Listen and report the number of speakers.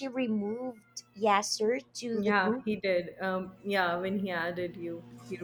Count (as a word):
two